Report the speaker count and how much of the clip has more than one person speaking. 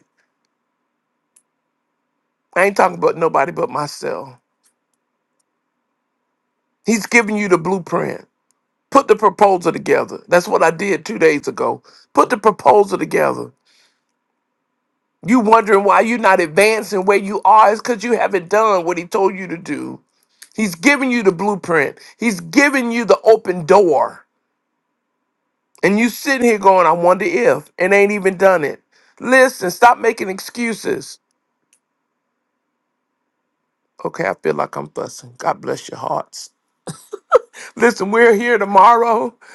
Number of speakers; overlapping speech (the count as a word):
one, no overlap